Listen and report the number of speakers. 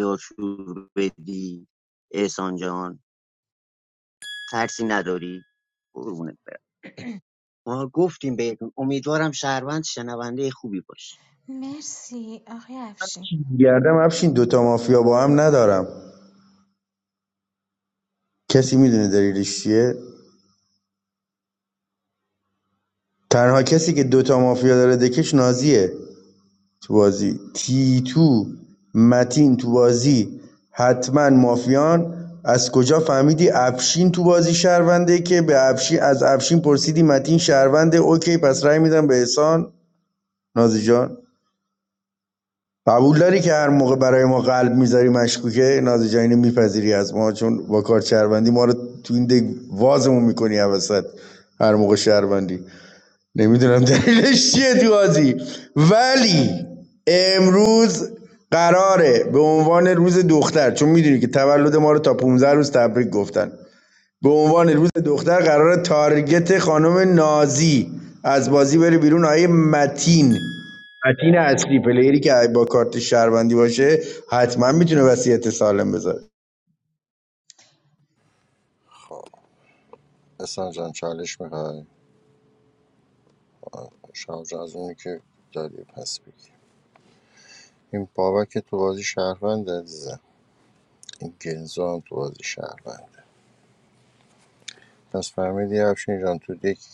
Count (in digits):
4